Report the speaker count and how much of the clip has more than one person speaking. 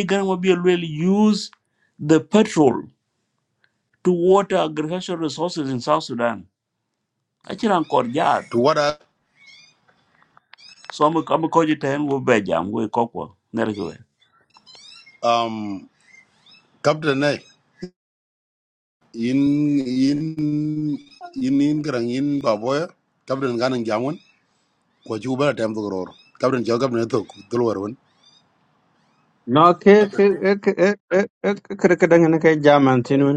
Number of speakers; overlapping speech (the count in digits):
3, no overlap